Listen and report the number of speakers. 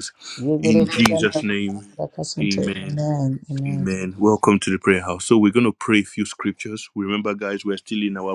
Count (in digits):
2